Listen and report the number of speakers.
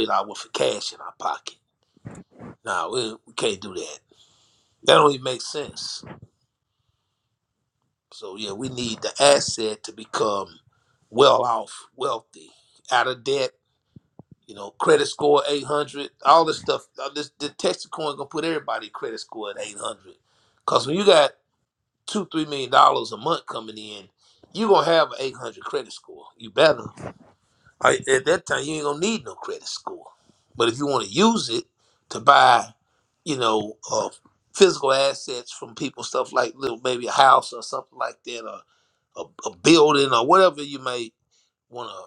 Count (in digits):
1